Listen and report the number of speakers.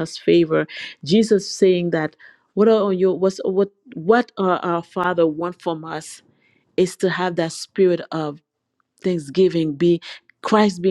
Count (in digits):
1